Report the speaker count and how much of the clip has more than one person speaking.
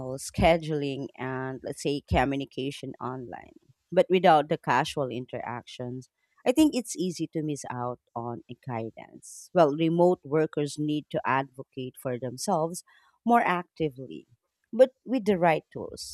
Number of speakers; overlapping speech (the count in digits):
1, no overlap